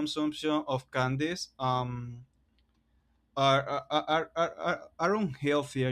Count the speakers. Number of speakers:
1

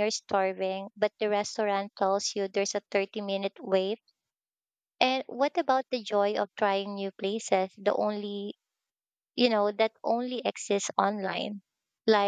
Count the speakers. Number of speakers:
1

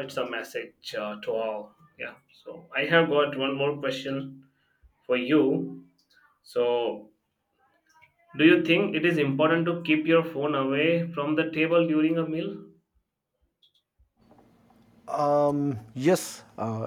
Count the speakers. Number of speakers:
2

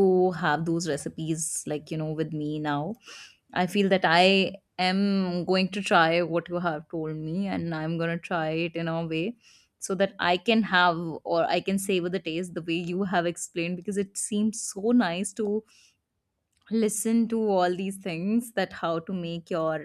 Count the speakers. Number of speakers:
1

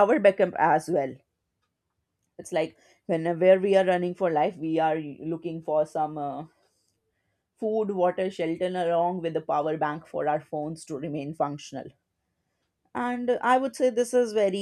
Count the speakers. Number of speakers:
1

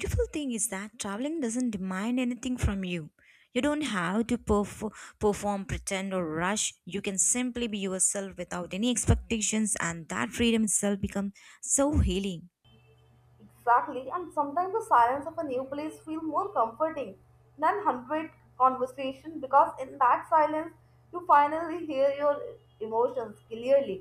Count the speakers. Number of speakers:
2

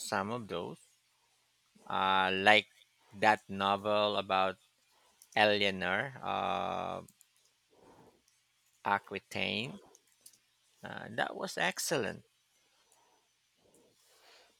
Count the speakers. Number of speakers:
1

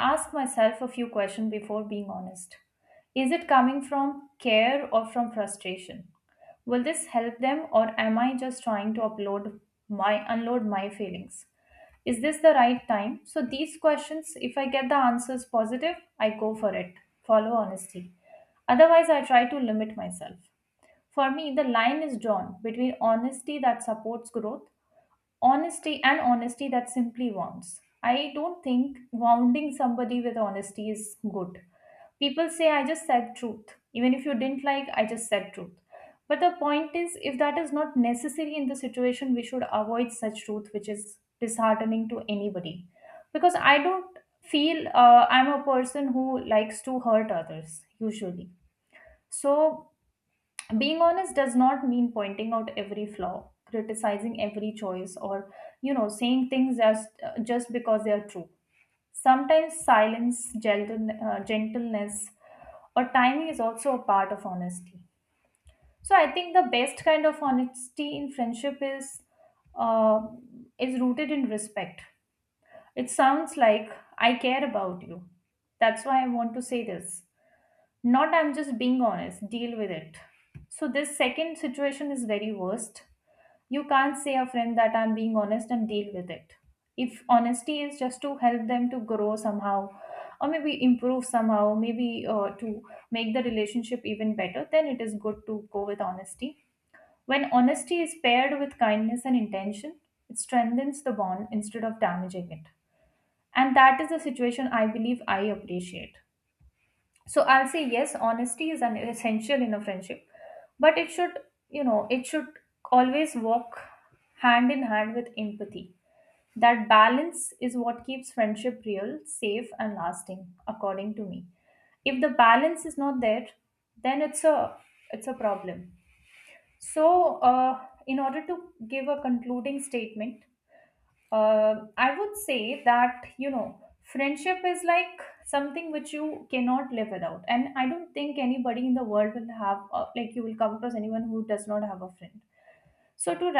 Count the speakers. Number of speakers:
1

